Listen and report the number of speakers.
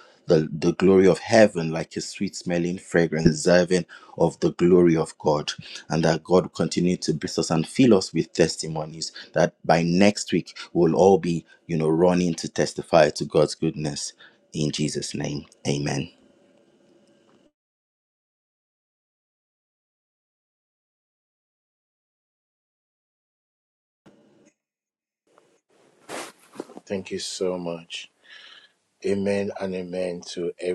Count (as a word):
two